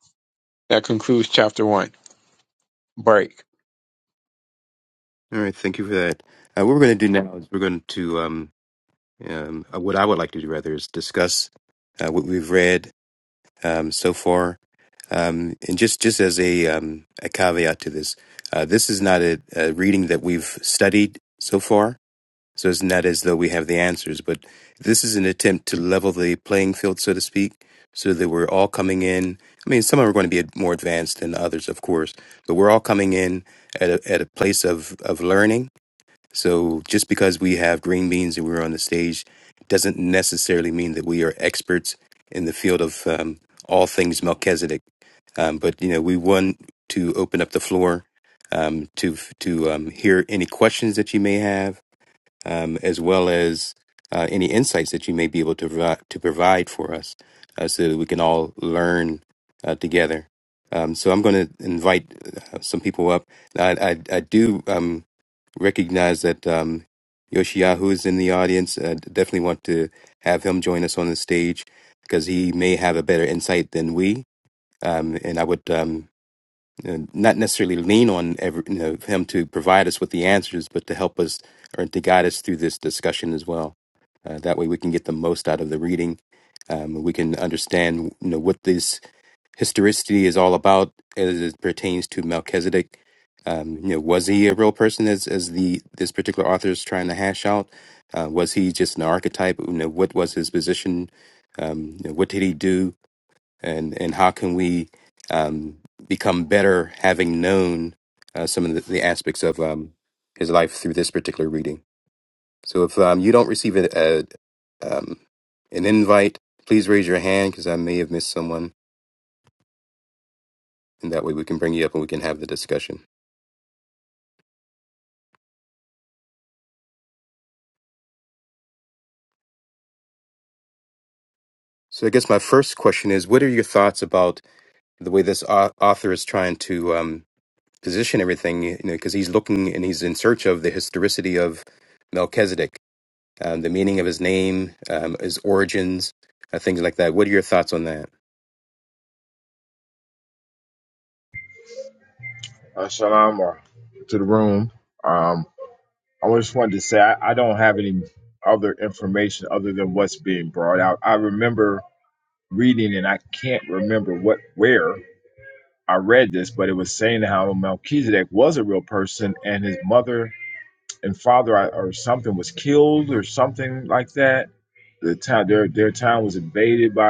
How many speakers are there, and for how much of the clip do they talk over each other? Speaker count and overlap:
3, no overlap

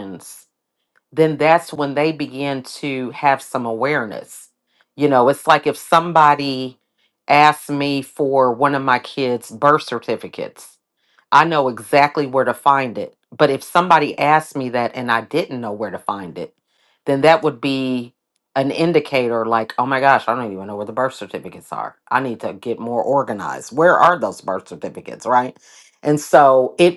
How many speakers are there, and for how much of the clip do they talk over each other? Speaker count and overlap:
1, no overlap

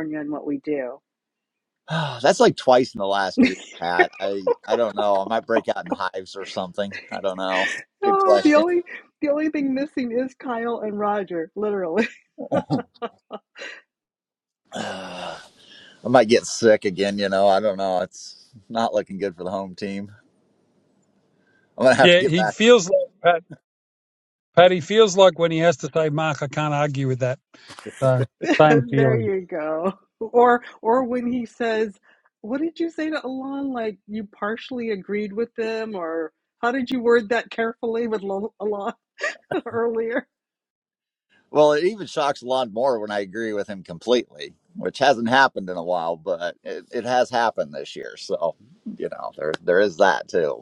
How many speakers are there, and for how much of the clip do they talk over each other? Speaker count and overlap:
3, about 3%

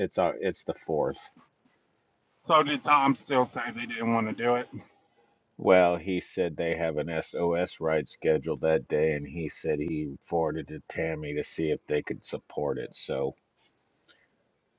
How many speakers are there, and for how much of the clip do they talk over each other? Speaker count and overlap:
2, no overlap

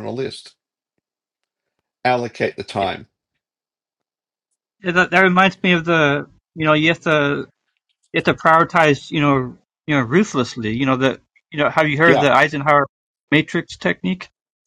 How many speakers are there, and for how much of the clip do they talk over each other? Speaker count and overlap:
2, about 2%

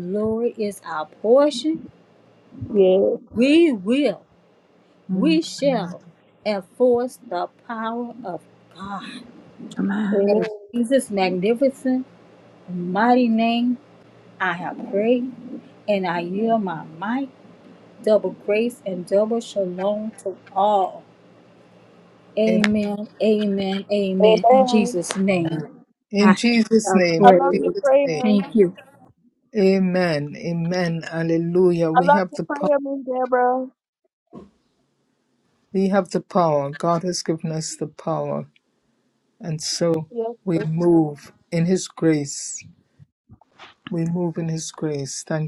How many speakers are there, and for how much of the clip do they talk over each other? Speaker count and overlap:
3, about 9%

